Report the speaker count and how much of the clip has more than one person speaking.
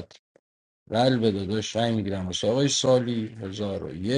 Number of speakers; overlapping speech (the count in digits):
1, no overlap